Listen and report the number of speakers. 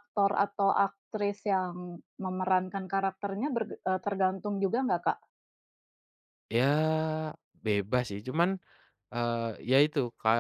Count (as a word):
two